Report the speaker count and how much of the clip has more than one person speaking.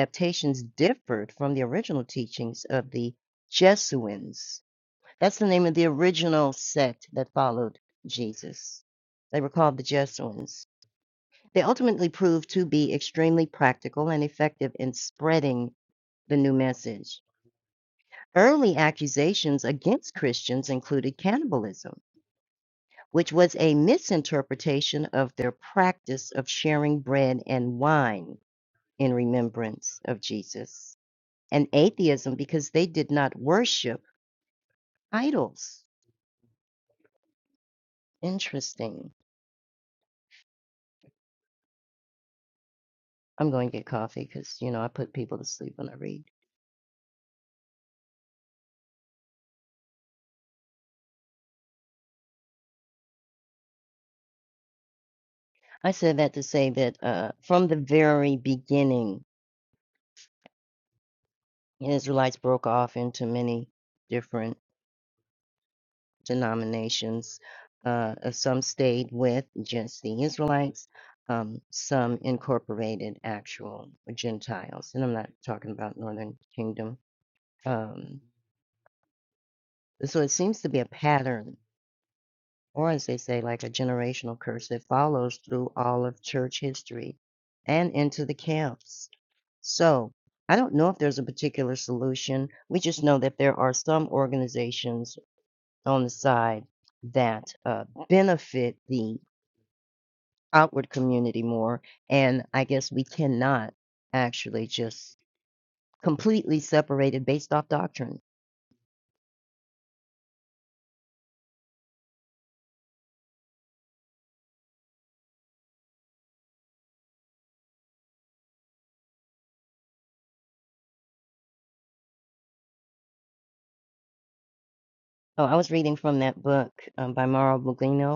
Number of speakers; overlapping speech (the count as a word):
one, no overlap